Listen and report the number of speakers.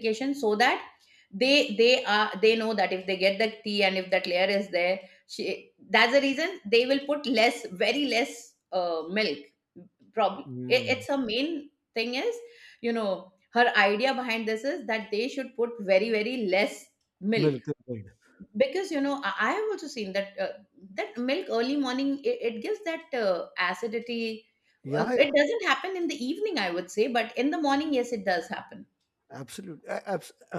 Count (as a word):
two